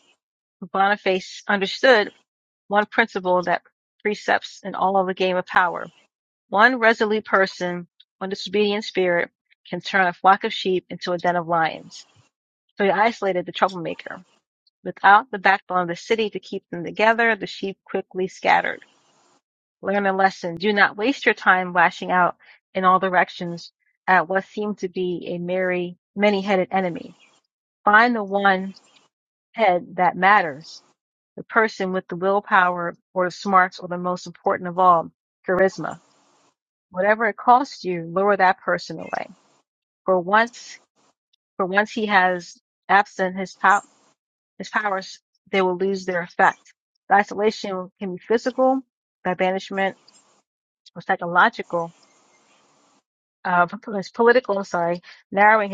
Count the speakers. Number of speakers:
one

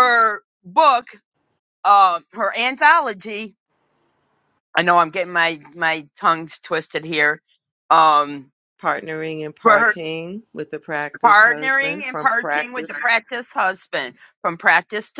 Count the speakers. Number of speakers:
two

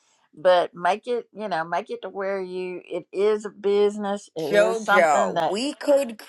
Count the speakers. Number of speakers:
two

